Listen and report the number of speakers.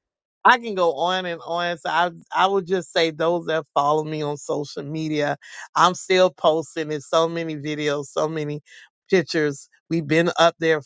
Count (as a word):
one